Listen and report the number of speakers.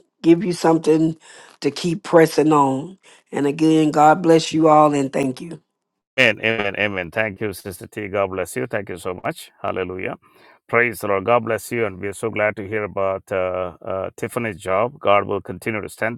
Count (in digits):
2